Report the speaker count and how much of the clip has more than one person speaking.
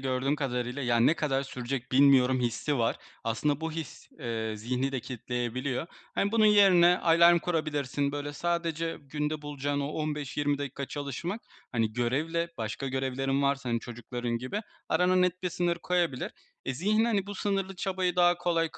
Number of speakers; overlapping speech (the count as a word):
one, no overlap